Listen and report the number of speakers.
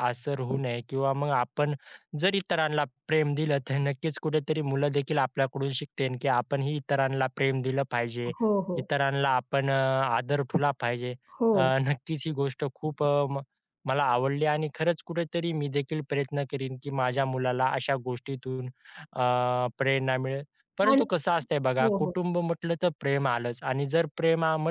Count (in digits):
2